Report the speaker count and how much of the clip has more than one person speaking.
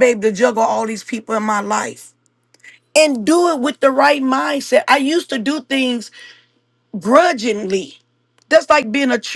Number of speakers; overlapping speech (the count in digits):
1, no overlap